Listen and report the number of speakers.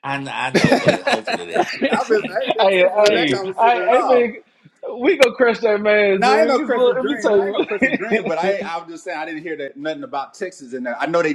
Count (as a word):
three